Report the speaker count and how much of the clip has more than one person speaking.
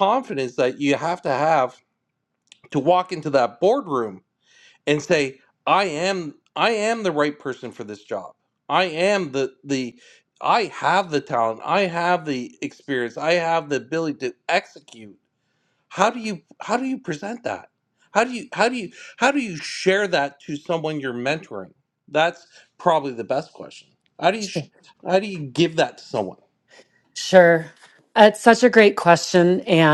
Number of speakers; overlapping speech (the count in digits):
2, no overlap